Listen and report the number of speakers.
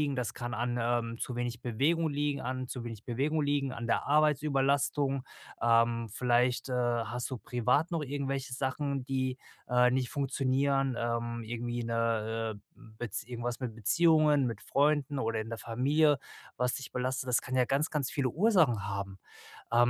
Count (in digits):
1